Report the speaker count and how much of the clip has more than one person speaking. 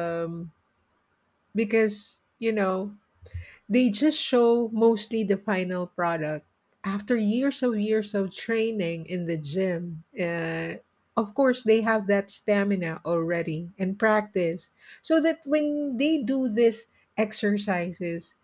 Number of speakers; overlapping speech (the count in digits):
1, no overlap